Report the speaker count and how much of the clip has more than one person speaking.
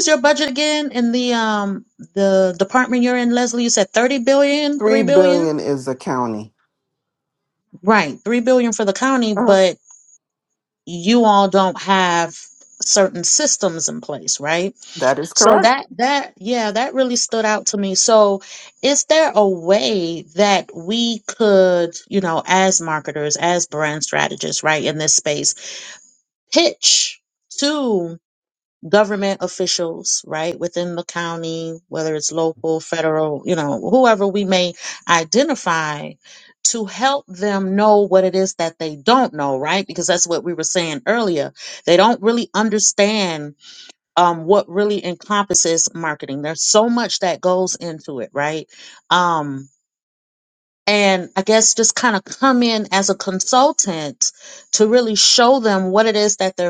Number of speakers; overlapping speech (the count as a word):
two, about 2%